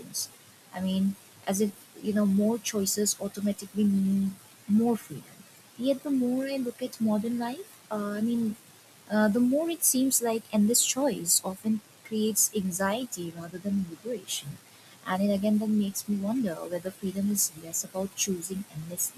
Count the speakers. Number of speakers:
1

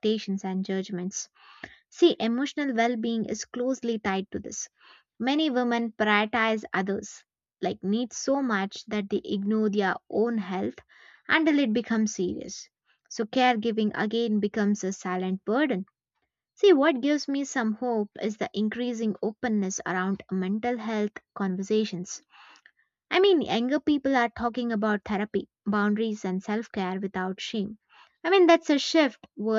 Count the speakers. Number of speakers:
1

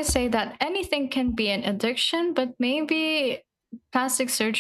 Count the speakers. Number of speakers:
1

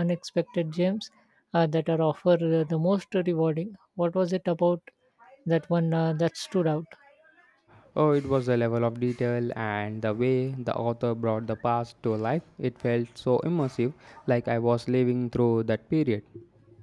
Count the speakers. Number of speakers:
2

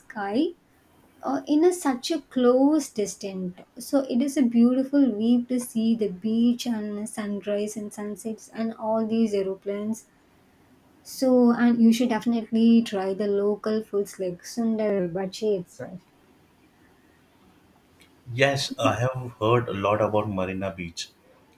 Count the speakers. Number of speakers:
2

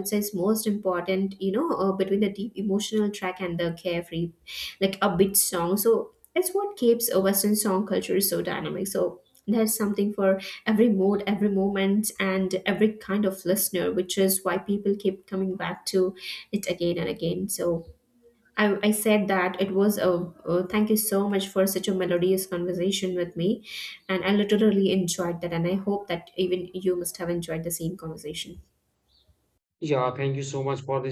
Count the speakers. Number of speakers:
2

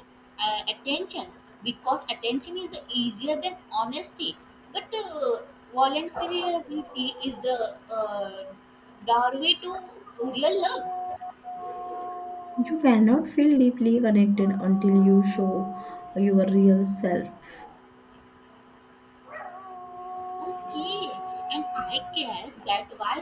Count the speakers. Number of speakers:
2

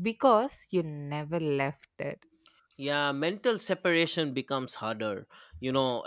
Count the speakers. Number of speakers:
2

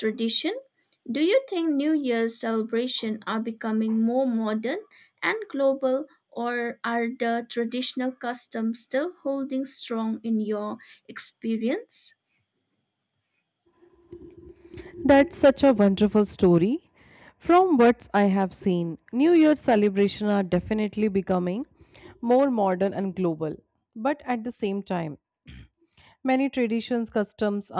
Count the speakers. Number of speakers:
2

